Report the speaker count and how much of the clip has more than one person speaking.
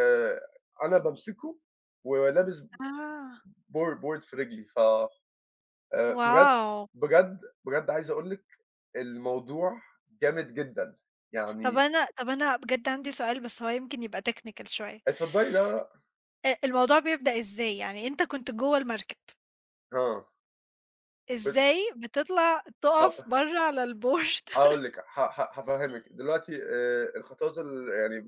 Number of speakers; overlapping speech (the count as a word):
two, about 4%